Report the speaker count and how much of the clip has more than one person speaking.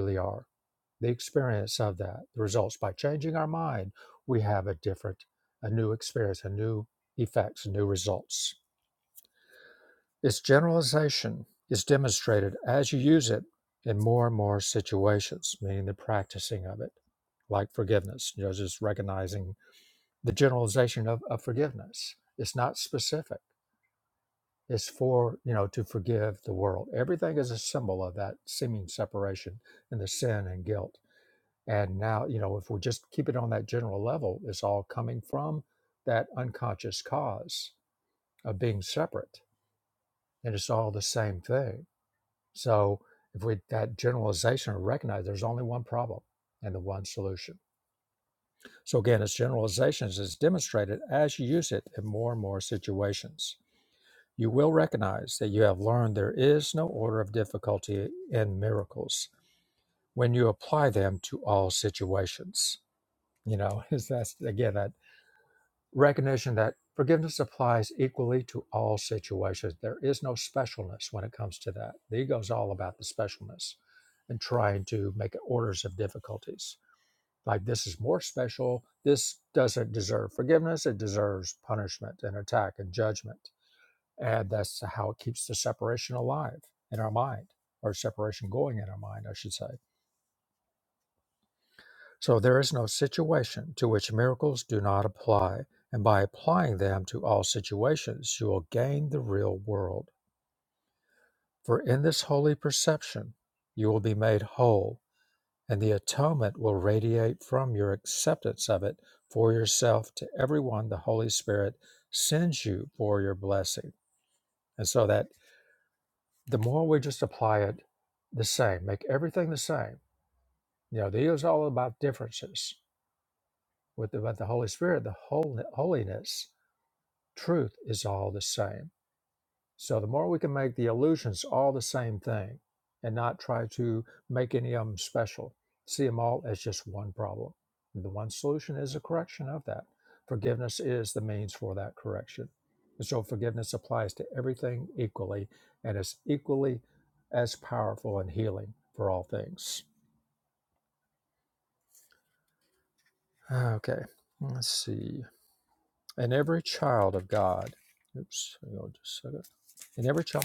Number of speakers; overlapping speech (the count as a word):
one, no overlap